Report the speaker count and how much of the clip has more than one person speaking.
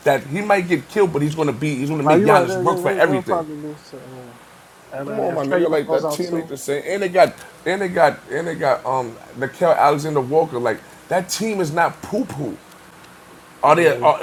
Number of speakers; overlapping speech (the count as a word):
two, about 23%